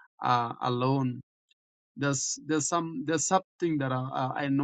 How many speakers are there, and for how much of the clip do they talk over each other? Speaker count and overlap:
1, no overlap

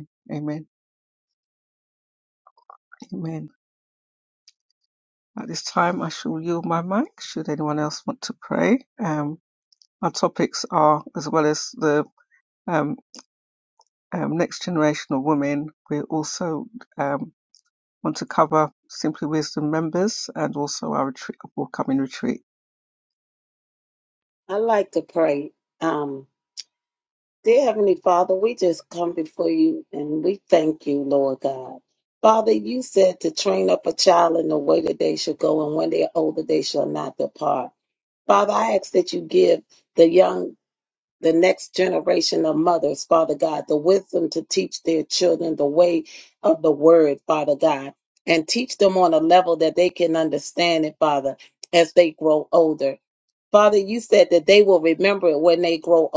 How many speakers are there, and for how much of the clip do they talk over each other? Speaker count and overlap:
2, no overlap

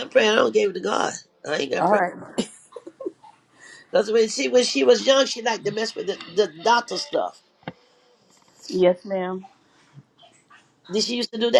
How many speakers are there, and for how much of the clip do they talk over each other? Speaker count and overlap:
2, about 2%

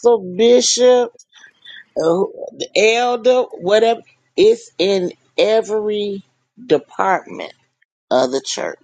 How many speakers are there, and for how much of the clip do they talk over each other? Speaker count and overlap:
1, no overlap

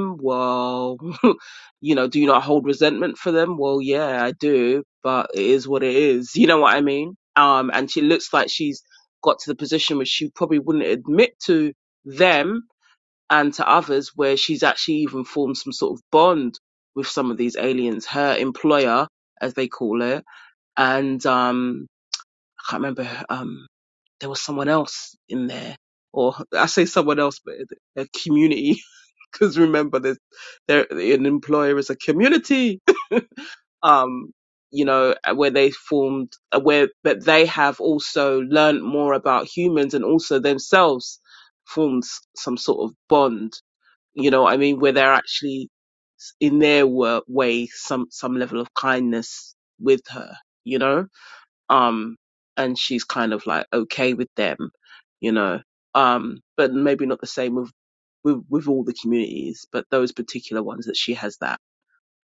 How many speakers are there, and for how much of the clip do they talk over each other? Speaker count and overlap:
1, no overlap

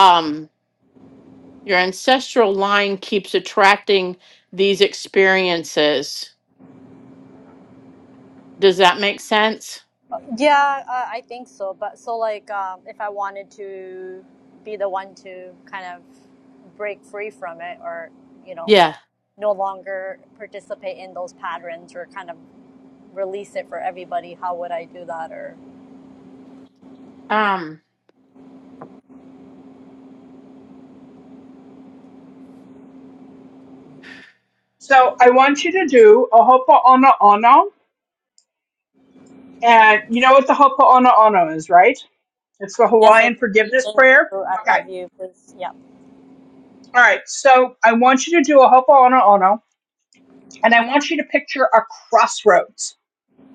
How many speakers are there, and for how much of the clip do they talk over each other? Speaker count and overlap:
3, about 3%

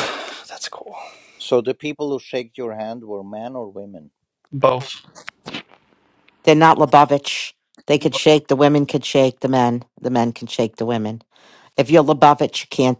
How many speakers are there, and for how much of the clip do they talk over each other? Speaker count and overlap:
3, about 1%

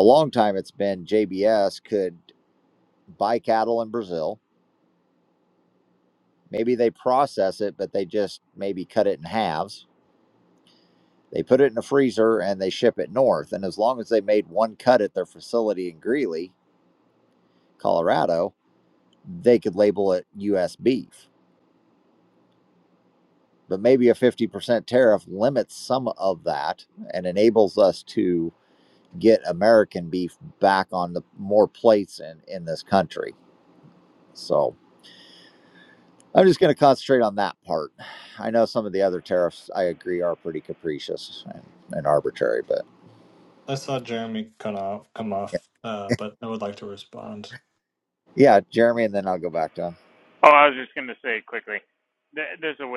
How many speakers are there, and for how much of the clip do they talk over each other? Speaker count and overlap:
3, no overlap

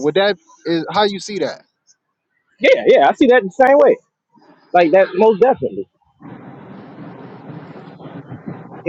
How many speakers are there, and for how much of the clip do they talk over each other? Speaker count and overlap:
2, no overlap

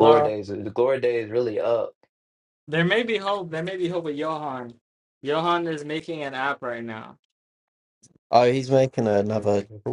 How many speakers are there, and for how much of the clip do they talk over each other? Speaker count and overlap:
3, about 8%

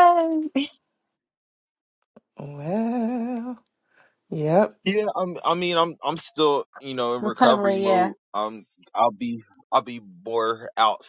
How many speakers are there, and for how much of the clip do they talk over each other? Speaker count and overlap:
3, about 8%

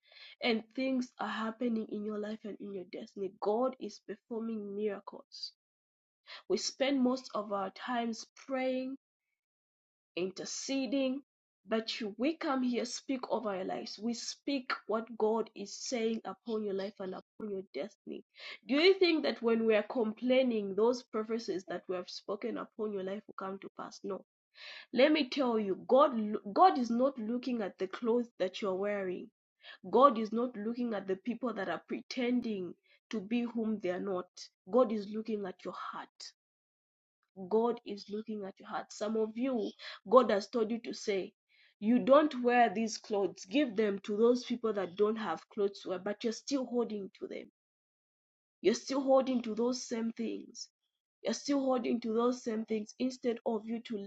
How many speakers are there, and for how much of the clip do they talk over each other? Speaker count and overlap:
1, no overlap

